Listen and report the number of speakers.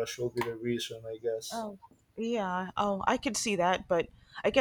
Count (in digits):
2